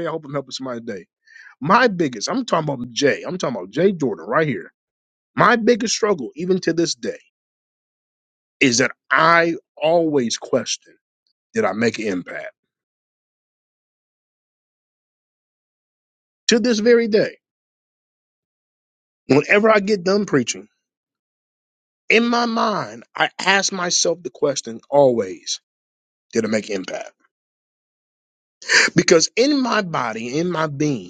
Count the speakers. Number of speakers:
one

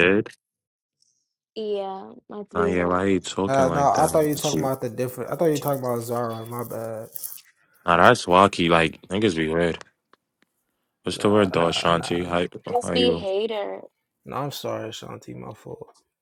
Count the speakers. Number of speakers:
three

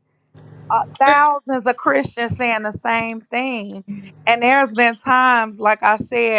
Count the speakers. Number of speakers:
one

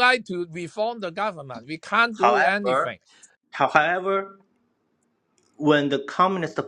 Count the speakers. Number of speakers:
two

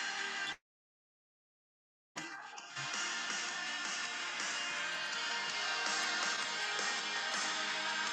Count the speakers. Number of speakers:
zero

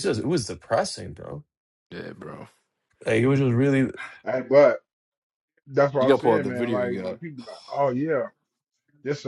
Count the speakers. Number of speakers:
three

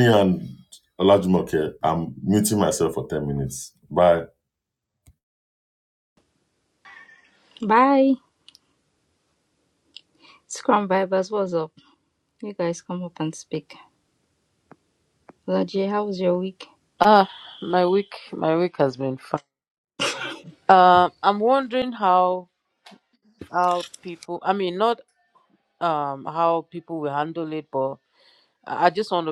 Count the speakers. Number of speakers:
three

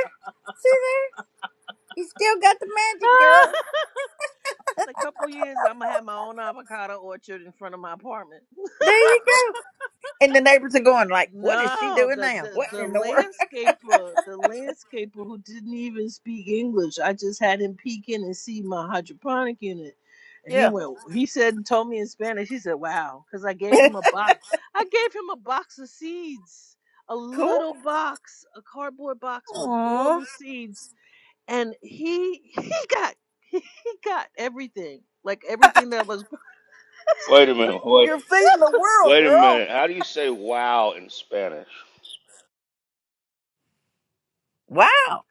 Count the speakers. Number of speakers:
three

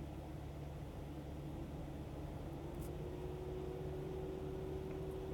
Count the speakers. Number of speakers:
zero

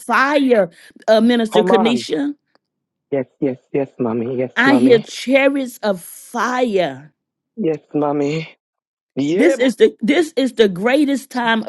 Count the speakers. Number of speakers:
two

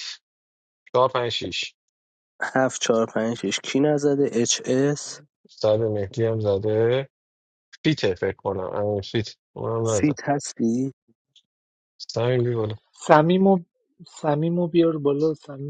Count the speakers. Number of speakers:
three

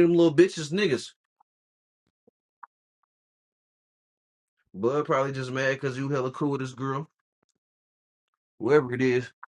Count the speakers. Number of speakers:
one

